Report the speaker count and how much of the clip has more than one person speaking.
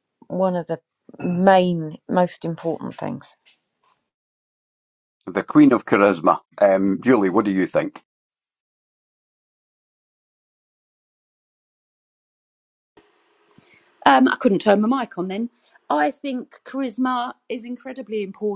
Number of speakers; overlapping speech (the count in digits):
3, no overlap